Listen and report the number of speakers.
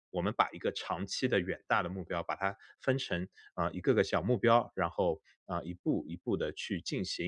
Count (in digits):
1